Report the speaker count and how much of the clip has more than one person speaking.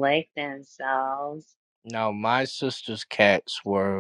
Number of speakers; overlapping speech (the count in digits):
2, no overlap